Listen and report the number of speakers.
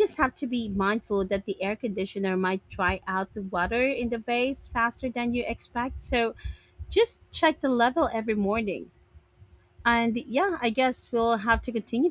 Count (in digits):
1